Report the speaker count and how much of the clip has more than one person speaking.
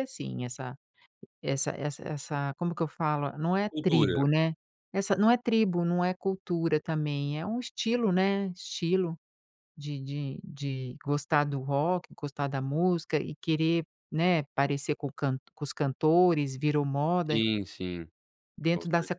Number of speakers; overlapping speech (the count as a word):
two, about 6%